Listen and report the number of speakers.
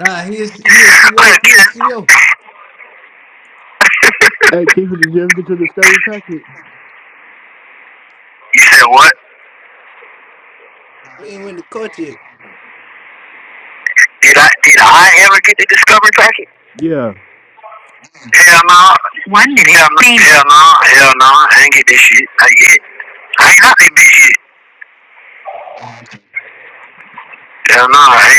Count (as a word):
three